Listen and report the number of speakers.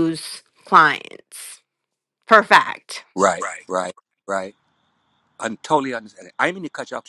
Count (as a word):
two